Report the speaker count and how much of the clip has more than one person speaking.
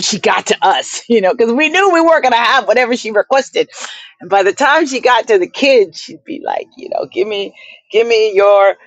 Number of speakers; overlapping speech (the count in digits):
1, no overlap